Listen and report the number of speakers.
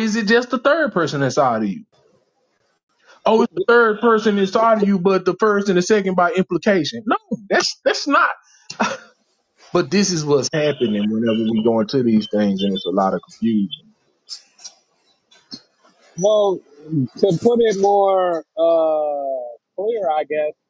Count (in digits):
2